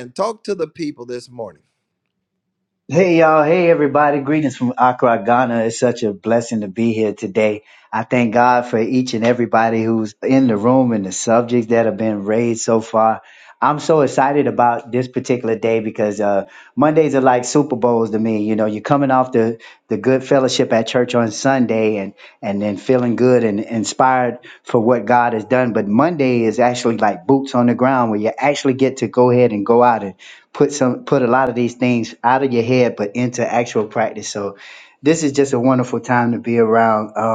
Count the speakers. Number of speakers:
two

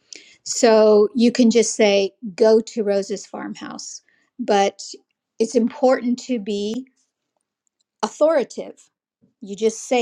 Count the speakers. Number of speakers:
one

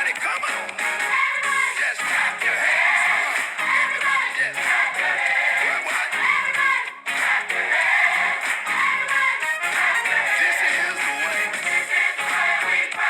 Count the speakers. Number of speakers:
zero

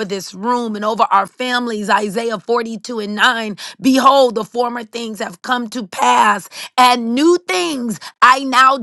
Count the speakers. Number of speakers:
one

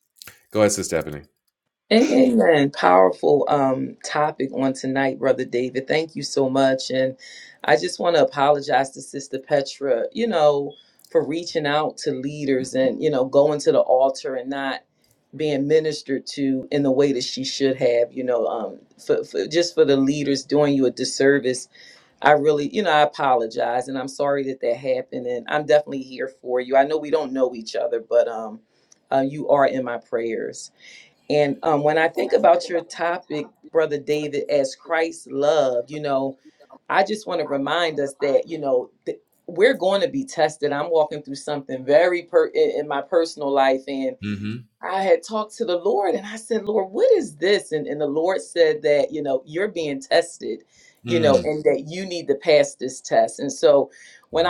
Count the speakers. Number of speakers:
two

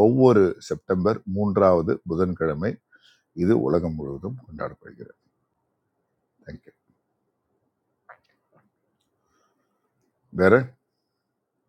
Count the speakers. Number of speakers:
one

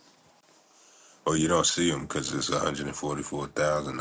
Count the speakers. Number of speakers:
one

